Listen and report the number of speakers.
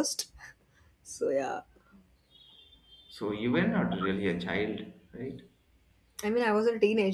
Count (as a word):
two